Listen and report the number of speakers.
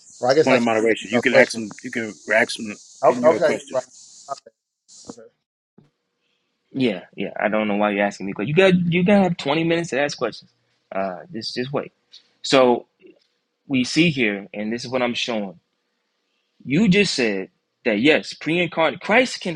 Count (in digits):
3